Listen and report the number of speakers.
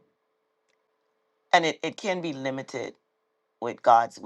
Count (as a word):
one